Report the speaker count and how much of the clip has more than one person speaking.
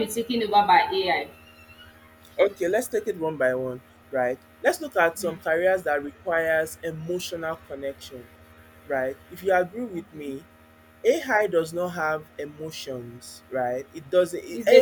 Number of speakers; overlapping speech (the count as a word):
two, about 3%